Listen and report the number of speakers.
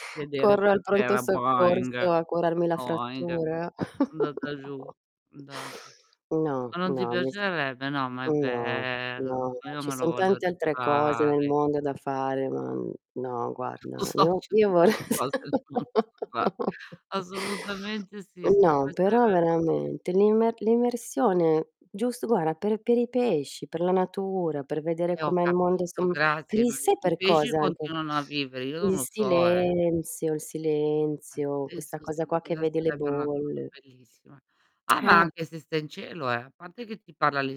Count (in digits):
2